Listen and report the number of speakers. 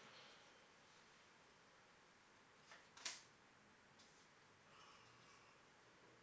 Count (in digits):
0